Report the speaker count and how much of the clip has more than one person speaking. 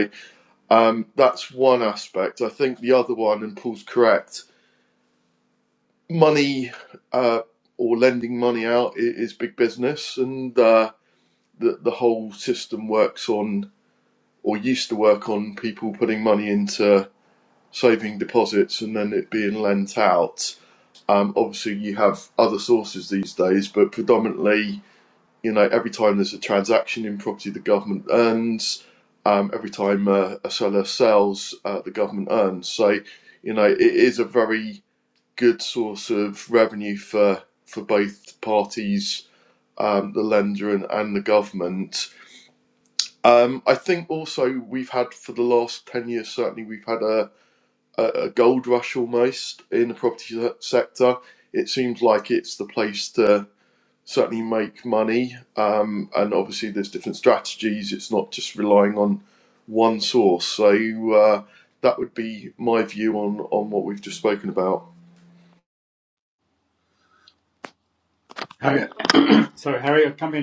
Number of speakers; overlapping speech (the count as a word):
two, no overlap